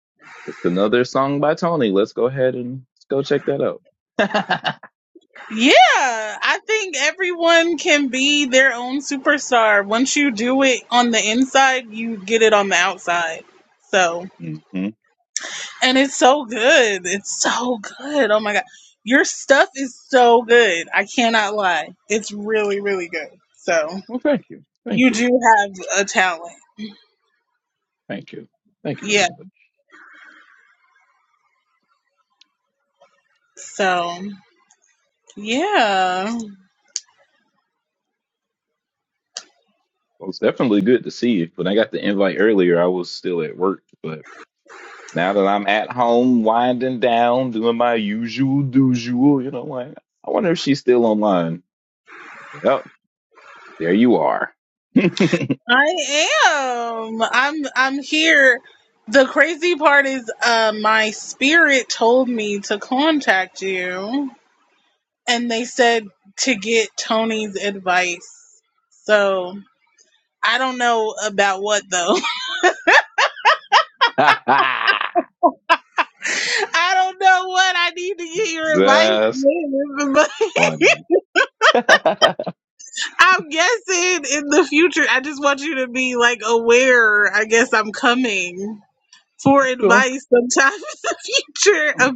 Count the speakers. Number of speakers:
2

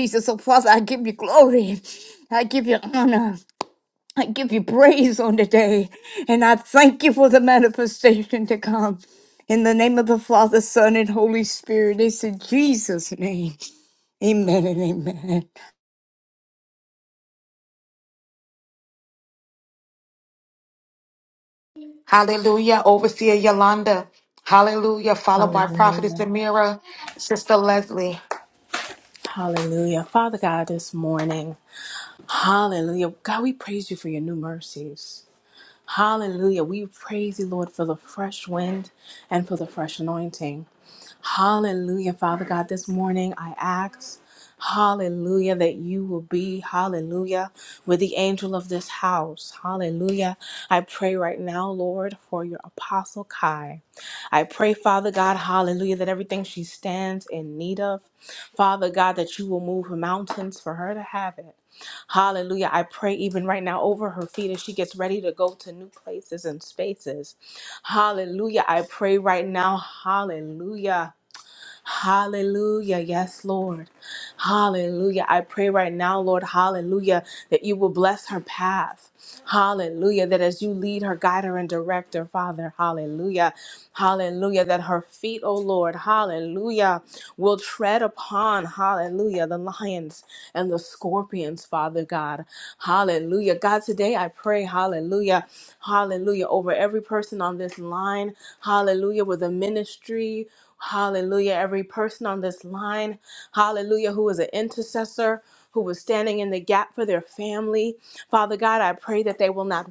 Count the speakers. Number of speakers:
3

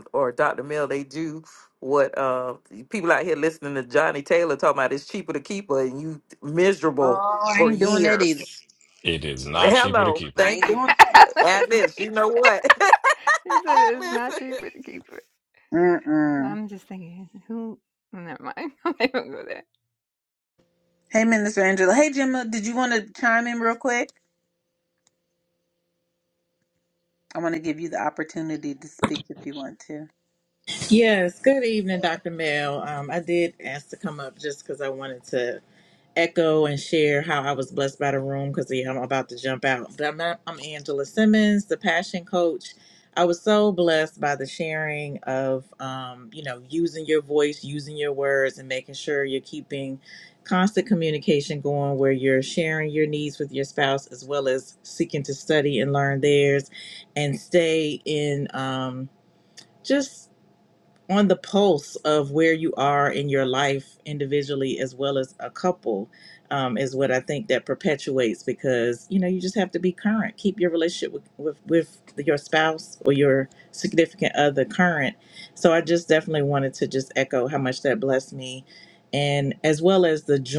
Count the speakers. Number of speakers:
5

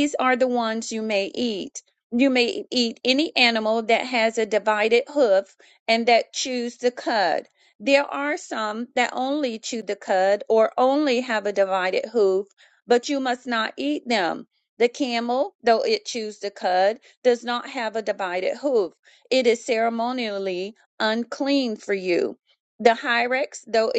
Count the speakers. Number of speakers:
1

